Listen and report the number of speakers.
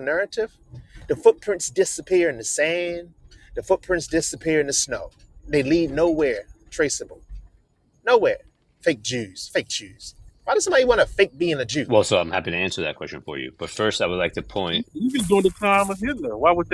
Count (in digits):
3